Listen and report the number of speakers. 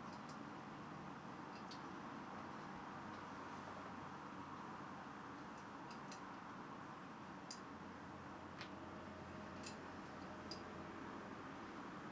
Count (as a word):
zero